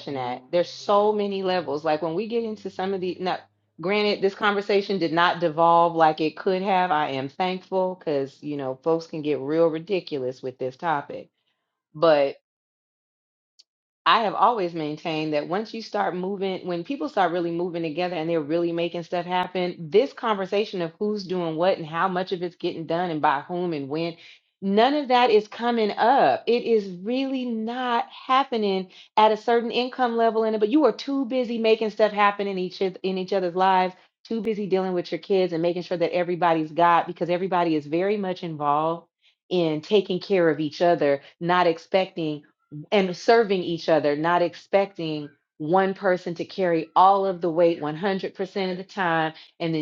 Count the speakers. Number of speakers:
one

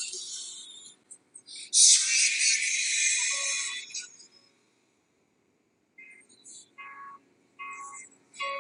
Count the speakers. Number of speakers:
zero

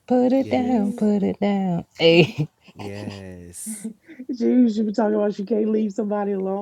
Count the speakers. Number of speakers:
three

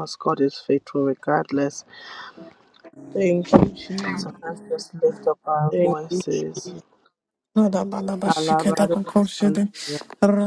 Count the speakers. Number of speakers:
three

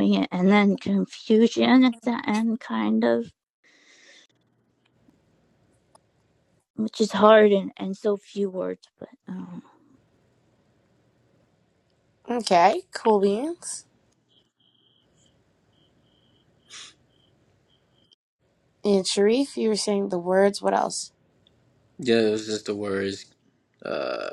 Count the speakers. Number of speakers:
three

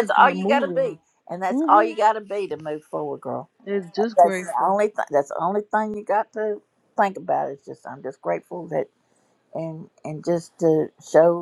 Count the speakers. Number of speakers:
two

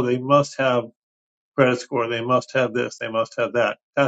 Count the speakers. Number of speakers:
one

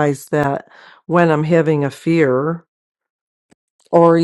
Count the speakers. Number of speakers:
one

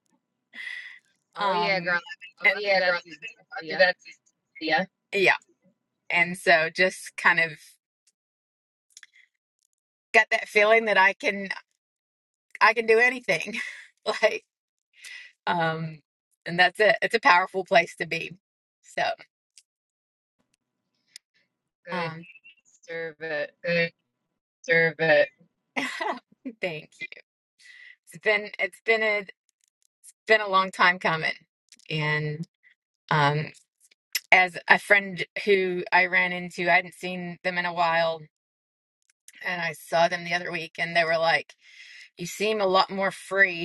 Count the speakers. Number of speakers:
two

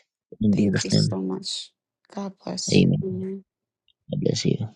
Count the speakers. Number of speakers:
two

